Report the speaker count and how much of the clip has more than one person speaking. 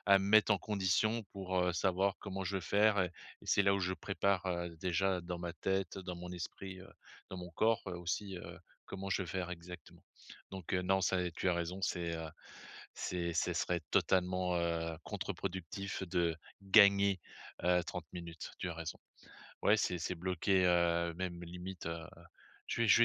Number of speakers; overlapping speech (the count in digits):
1, no overlap